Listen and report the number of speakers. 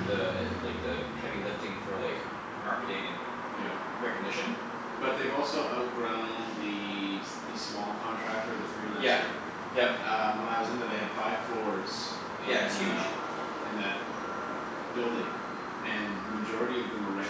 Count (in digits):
2